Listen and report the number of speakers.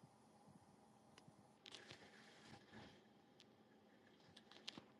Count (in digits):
0